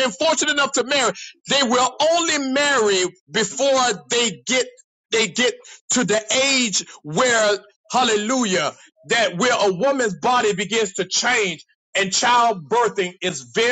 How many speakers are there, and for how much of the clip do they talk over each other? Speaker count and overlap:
1, no overlap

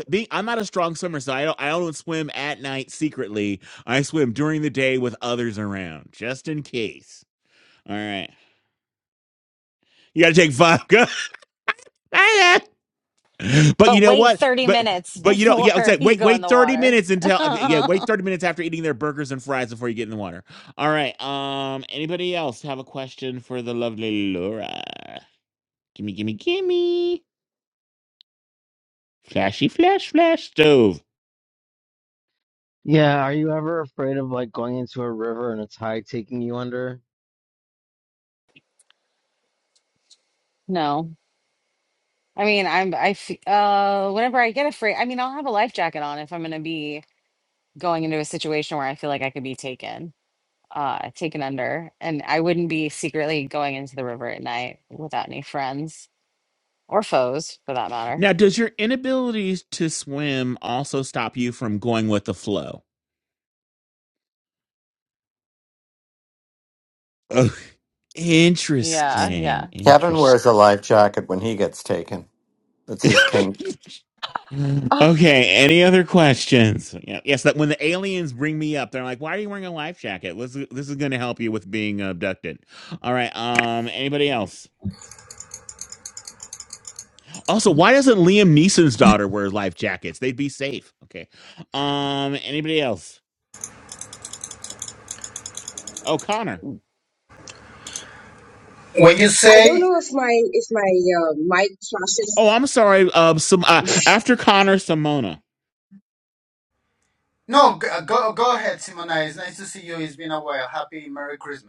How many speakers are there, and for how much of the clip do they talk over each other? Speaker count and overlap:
6, about 4%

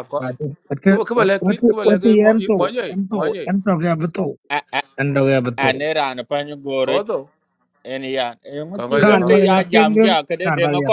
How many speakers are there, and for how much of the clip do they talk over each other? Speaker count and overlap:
3, about 43%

